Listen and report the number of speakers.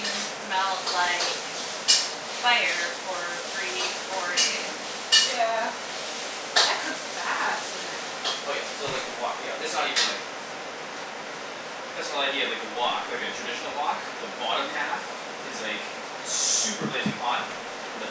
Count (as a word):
three